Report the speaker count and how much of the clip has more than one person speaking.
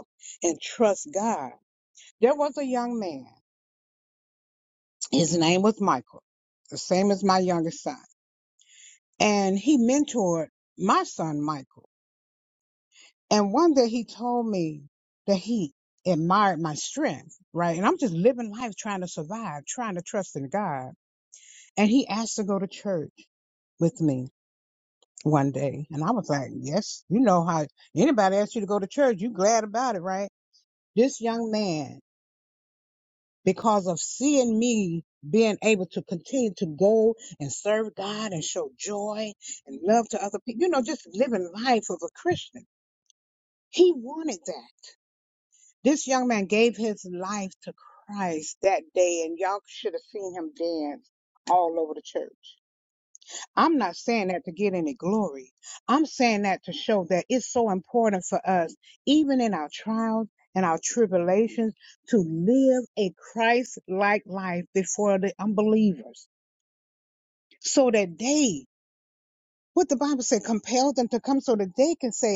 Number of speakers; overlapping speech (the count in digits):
1, no overlap